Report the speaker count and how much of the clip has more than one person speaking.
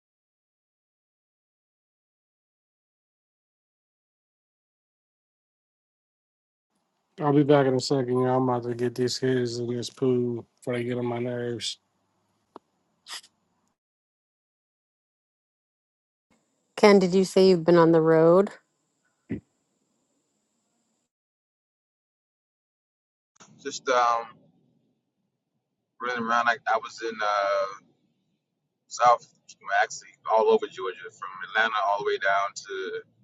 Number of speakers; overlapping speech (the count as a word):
three, no overlap